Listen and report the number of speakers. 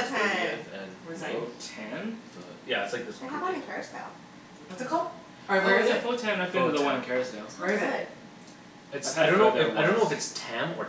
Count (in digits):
4